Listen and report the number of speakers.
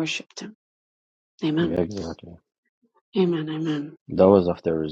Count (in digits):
2